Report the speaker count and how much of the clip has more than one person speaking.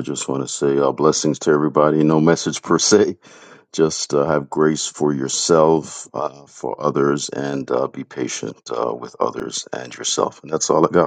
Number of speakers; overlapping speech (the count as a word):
one, no overlap